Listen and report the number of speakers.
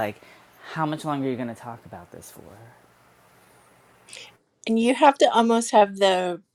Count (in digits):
2